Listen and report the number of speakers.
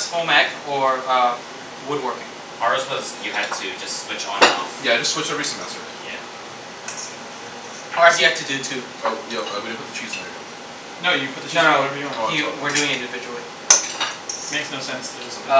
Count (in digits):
4